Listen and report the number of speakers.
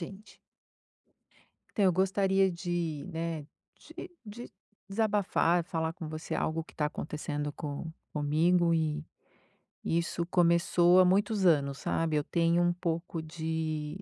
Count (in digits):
1